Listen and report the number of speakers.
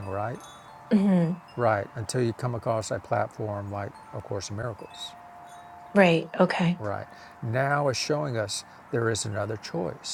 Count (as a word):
two